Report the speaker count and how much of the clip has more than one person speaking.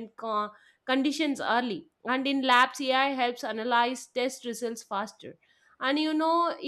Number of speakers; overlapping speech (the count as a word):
one, no overlap